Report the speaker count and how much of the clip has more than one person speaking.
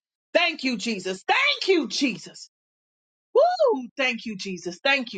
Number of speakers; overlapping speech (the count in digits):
1, no overlap